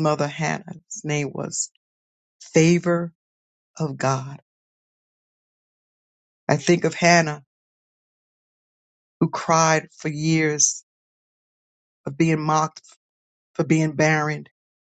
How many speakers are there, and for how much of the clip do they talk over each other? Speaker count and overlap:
1, no overlap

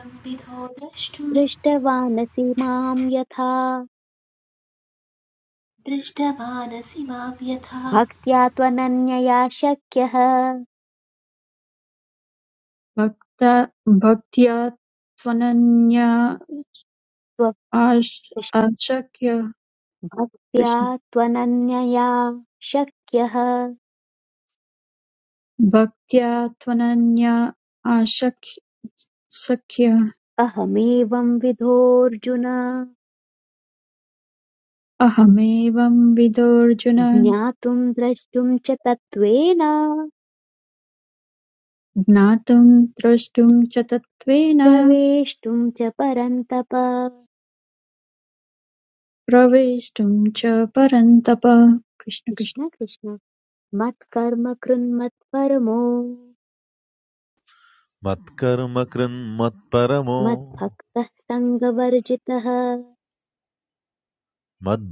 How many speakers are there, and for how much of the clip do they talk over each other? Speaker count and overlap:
4, about 2%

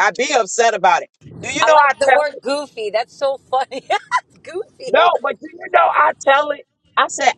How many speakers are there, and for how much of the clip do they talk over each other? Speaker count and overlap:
2, about 14%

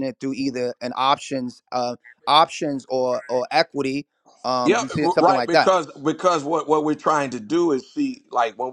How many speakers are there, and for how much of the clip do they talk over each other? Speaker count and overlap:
2, about 12%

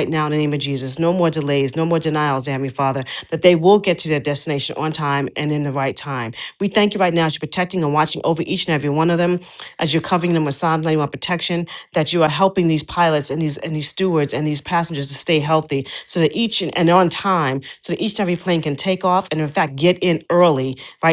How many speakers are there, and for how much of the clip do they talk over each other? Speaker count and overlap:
1, no overlap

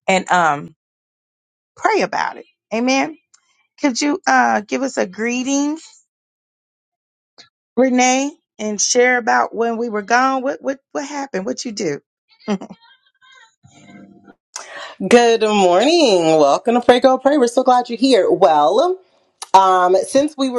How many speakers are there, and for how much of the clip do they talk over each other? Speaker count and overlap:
2, no overlap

